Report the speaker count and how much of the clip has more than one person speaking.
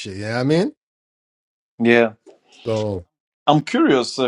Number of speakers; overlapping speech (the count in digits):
2, no overlap